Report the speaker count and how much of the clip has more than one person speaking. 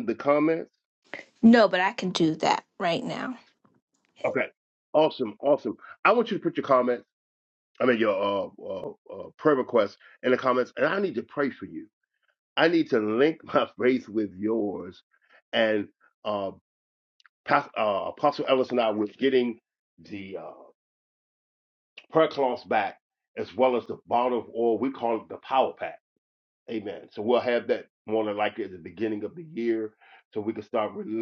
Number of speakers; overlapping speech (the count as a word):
two, no overlap